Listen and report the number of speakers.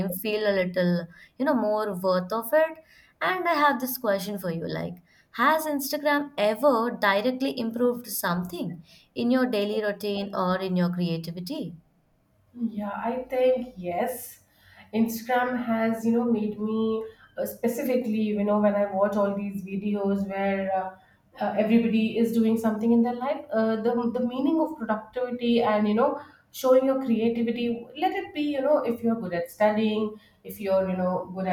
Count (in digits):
2